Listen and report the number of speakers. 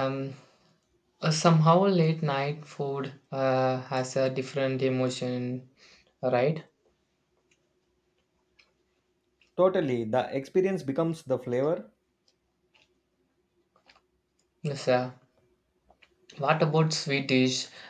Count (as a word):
two